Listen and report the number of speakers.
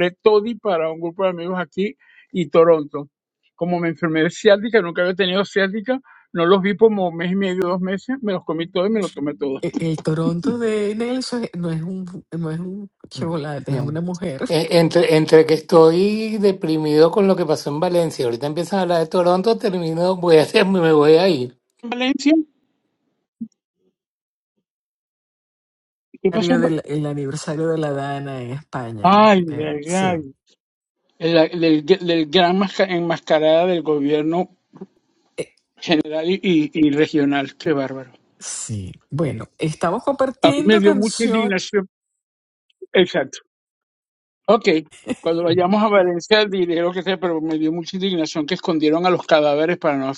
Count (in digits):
3